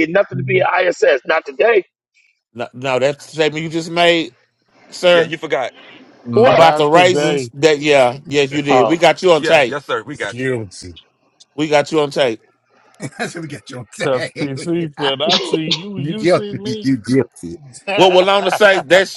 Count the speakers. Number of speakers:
5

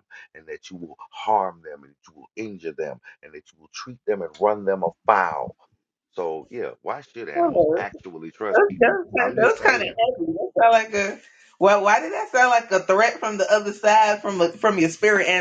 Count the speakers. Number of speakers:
2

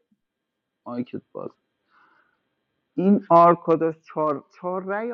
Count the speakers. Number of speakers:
1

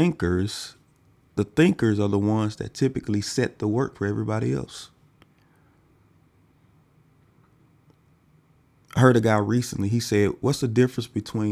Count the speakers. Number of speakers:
1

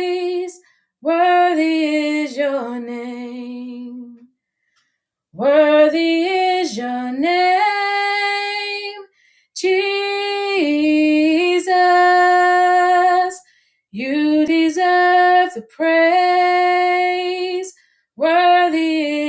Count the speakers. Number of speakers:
1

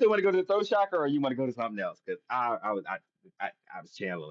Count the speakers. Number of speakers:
1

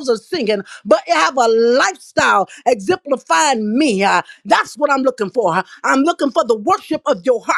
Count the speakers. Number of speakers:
1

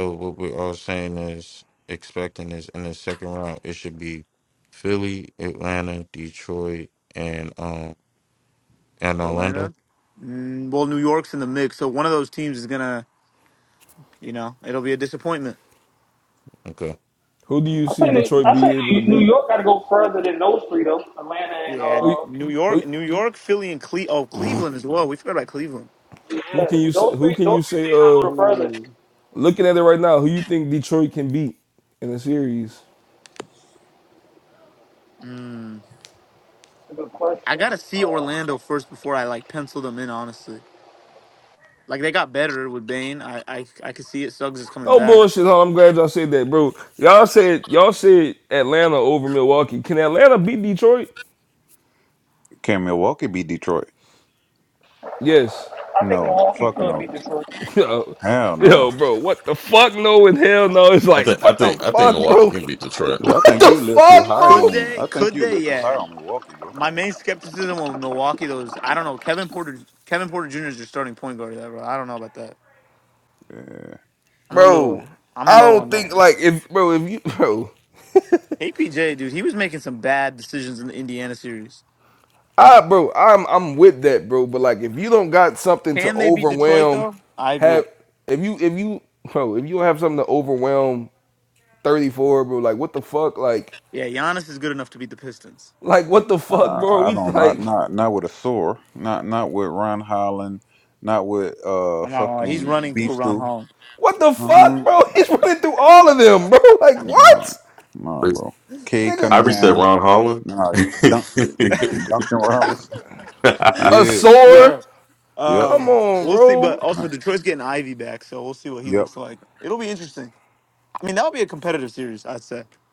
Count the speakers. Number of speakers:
6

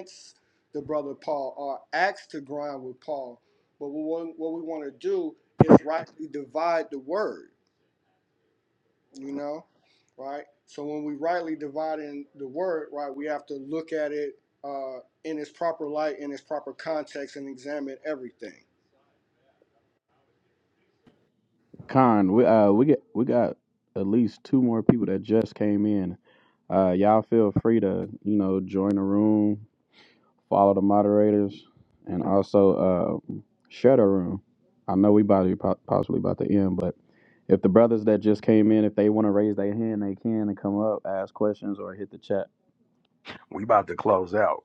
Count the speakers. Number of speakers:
3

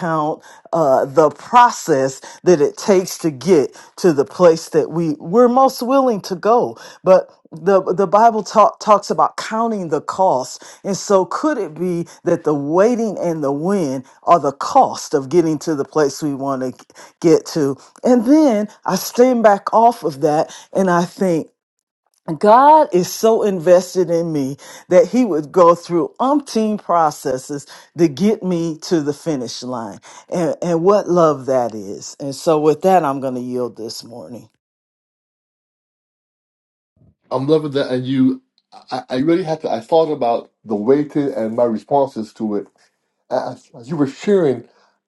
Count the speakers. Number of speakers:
2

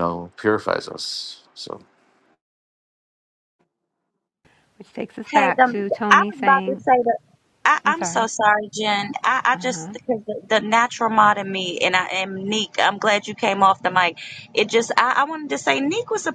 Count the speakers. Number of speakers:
3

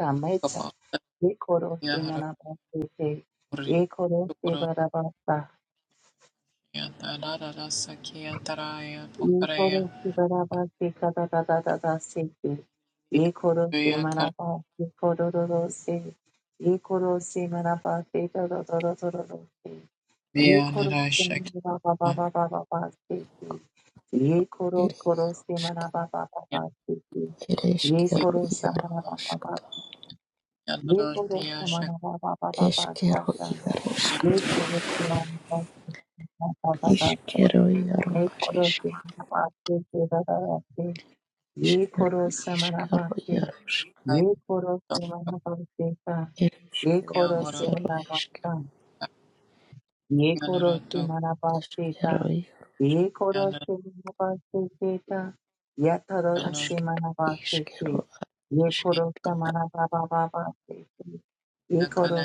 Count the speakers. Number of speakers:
3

